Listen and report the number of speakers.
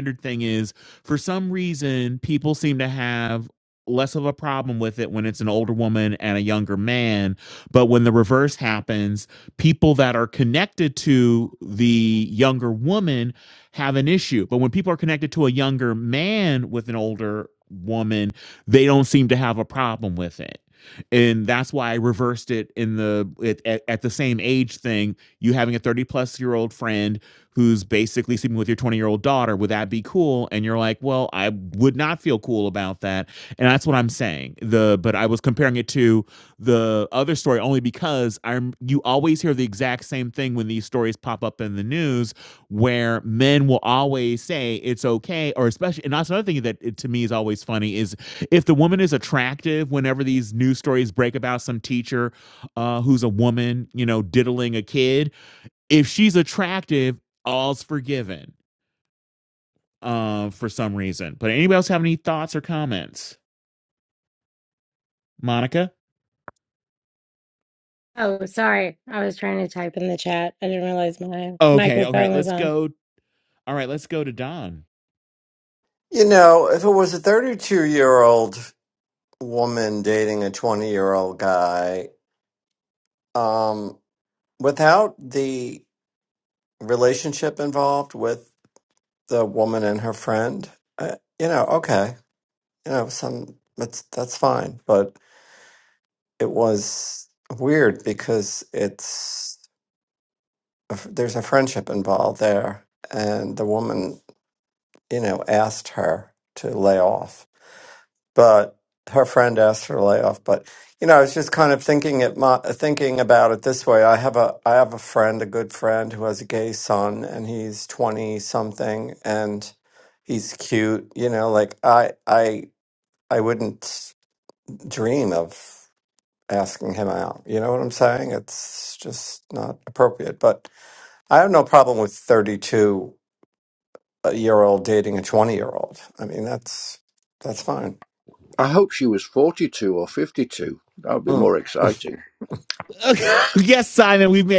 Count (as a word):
four